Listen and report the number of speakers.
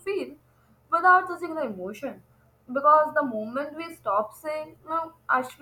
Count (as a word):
one